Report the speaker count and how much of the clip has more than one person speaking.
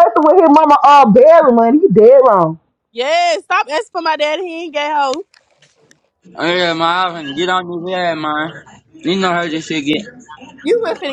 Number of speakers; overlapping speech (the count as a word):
three, no overlap